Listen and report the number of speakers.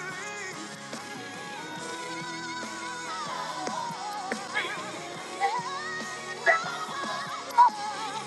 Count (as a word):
zero